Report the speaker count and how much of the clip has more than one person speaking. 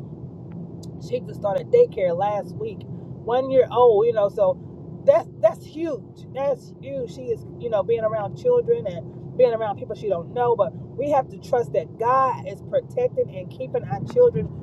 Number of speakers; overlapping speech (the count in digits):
1, no overlap